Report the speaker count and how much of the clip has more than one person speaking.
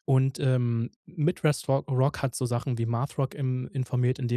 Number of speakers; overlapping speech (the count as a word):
one, no overlap